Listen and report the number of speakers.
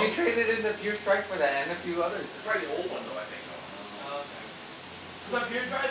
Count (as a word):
three